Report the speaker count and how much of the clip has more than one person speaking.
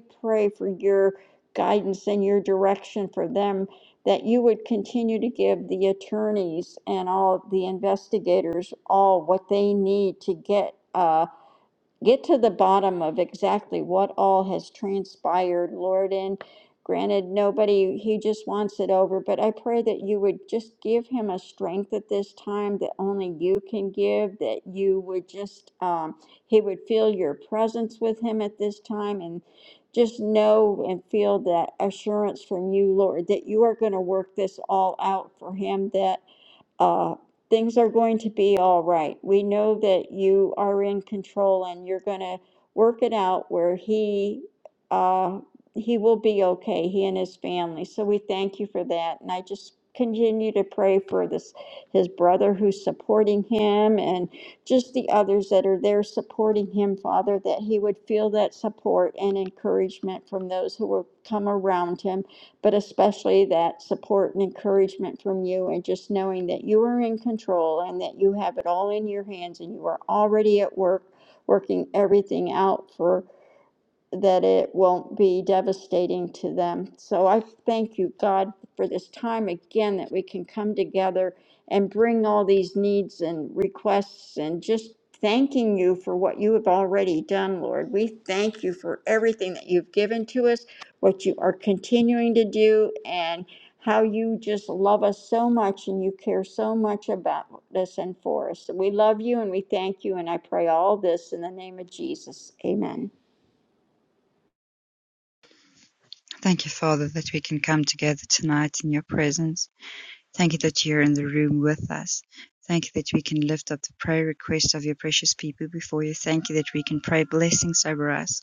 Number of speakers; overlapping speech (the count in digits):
2, no overlap